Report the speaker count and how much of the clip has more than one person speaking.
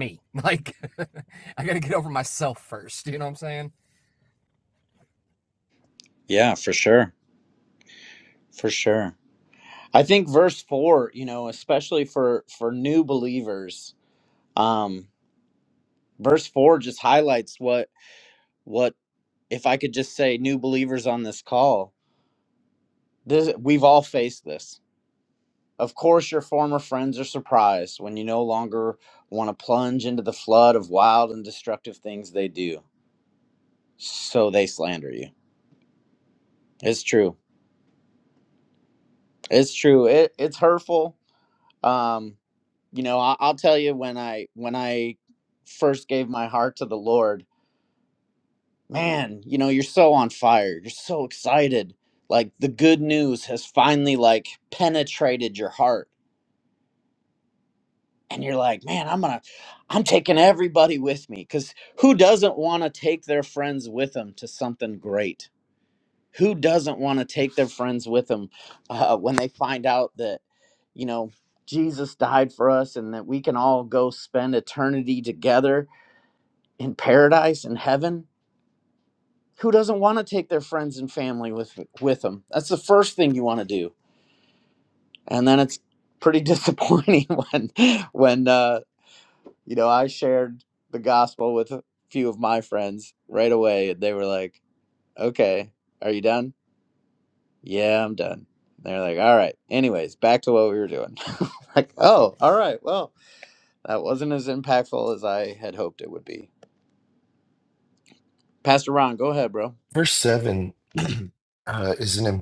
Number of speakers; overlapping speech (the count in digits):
3, no overlap